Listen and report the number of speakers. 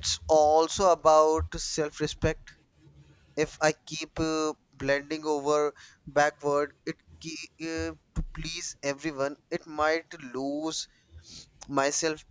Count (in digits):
1